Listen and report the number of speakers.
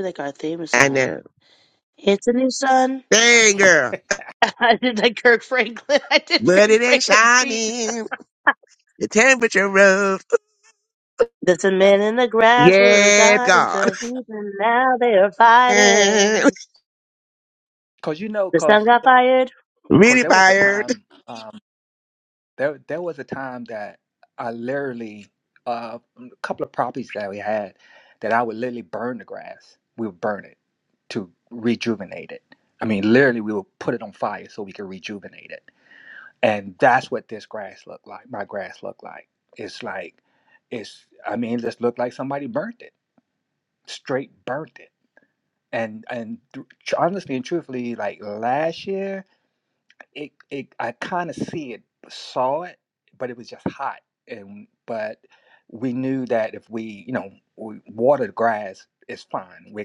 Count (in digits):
3